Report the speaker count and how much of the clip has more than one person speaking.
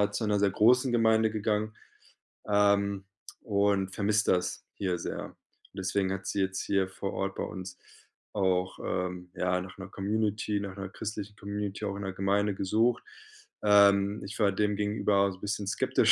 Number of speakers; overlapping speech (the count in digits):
1, no overlap